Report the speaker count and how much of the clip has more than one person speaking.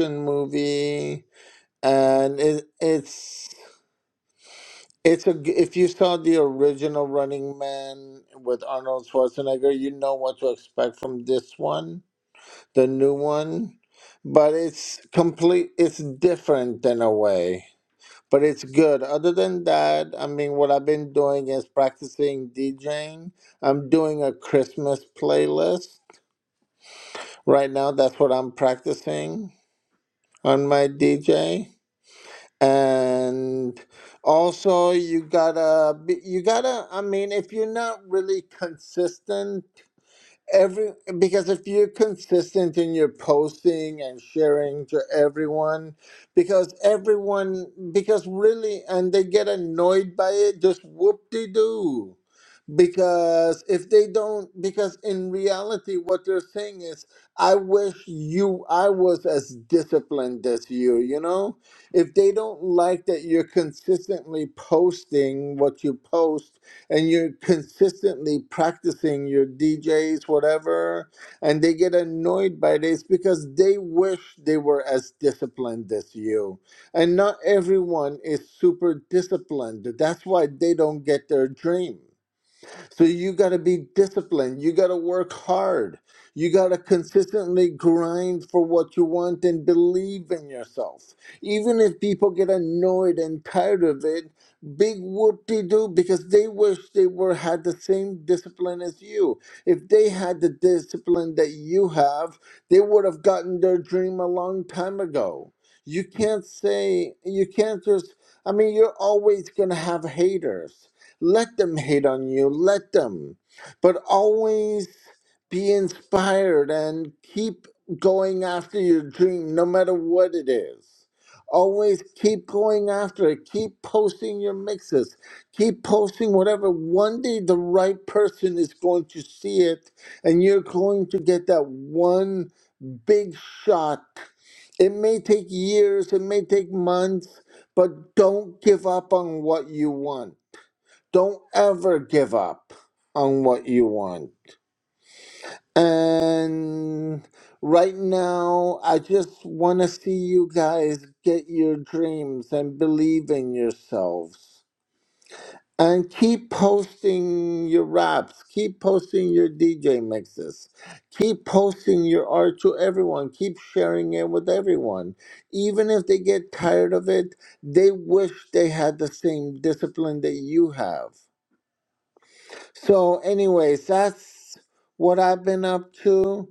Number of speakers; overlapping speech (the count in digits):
1, no overlap